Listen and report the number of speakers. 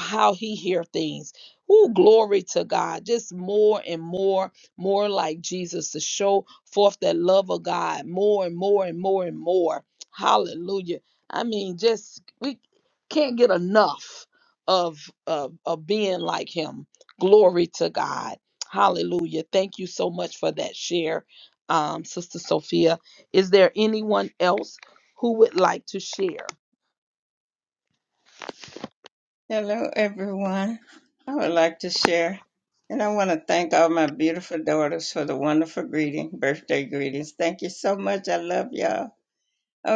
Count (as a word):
two